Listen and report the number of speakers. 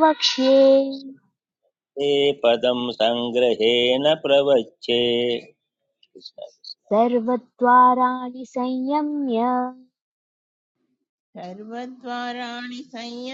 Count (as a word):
three